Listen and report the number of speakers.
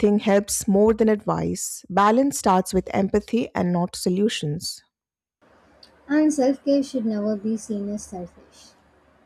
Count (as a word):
two